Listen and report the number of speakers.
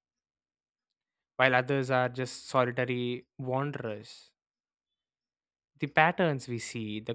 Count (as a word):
one